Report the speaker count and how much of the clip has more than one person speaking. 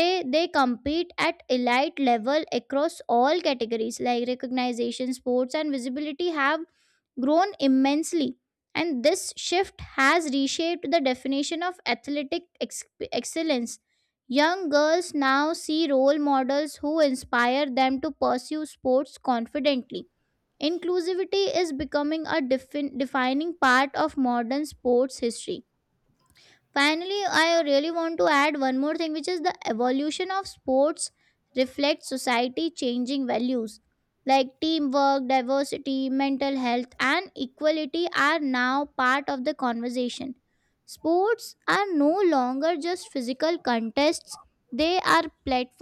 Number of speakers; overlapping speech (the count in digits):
1, no overlap